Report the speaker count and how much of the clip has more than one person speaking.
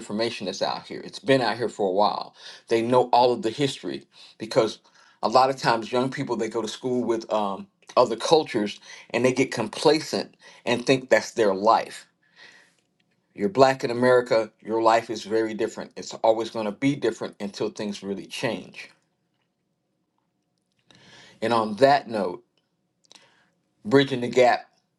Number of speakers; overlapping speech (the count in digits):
1, no overlap